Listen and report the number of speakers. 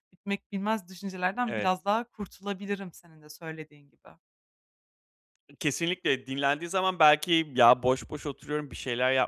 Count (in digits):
2